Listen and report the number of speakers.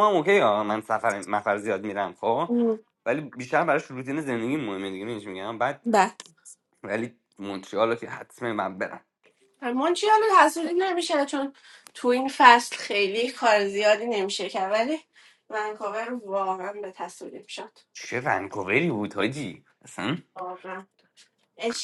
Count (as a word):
two